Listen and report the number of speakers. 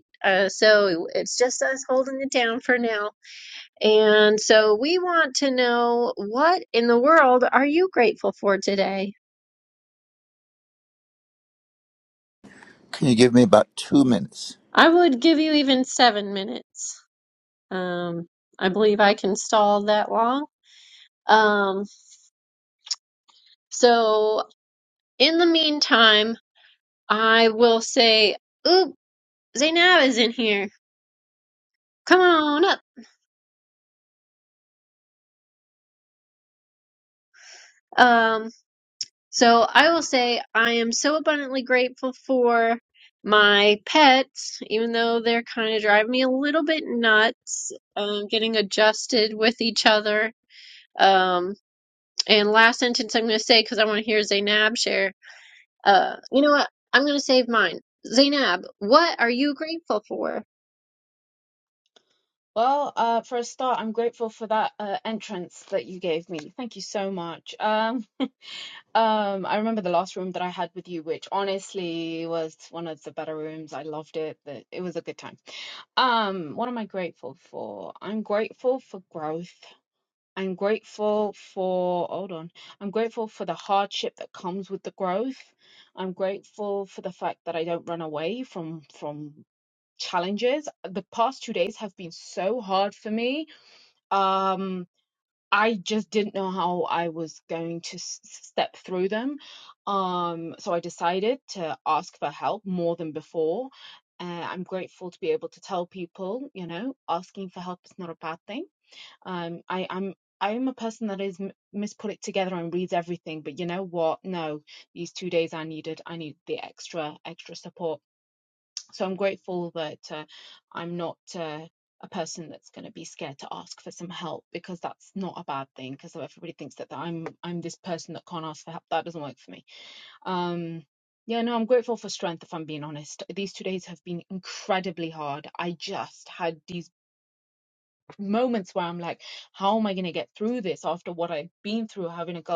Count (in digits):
3